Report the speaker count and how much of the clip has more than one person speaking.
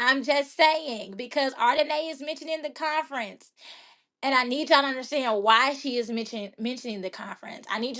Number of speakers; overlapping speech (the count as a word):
one, no overlap